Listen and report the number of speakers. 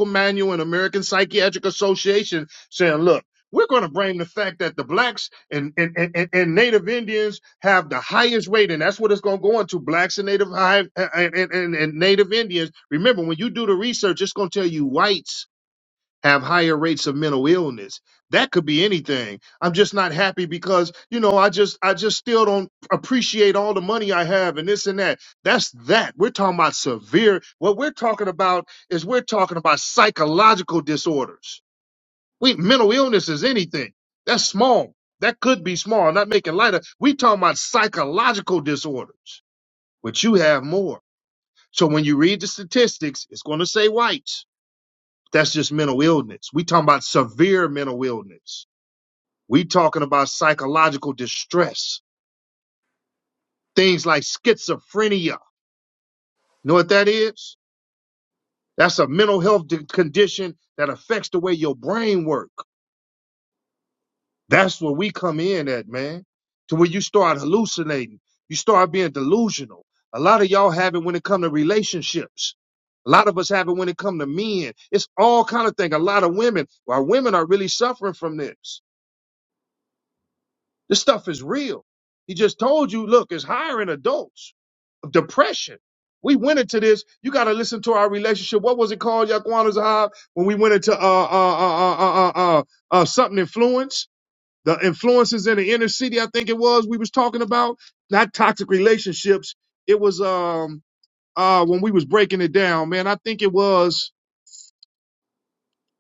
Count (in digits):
1